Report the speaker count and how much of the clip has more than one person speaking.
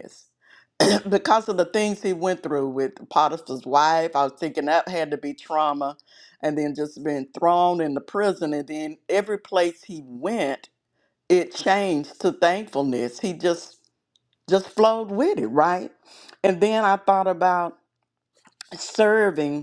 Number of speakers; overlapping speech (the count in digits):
1, no overlap